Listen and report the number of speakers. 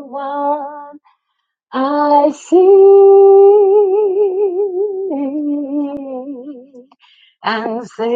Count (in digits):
1